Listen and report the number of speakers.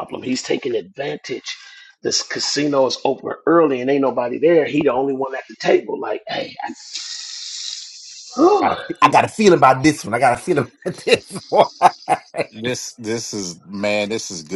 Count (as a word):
three